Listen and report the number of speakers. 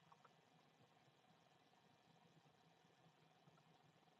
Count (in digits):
0